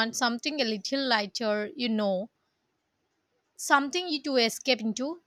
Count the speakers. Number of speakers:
1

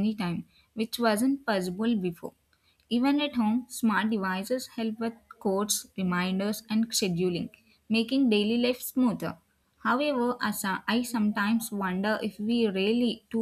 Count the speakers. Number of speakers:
1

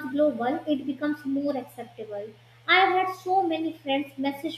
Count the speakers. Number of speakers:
1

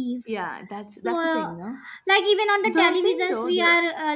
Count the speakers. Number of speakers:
2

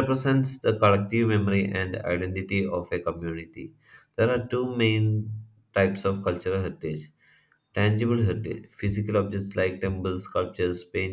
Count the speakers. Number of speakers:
1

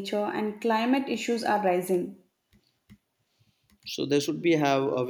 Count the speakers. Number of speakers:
2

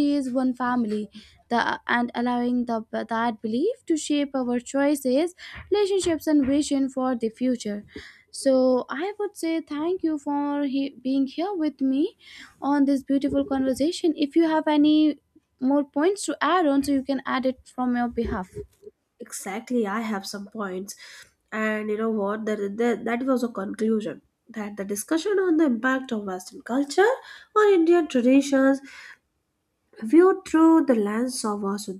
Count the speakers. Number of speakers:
2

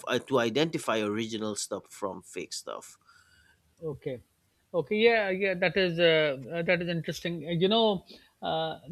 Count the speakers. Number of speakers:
2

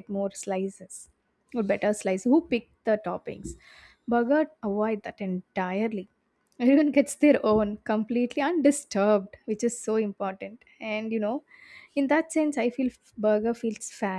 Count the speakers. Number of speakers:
1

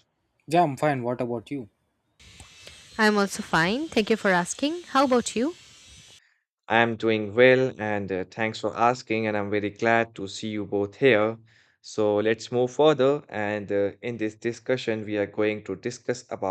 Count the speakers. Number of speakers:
3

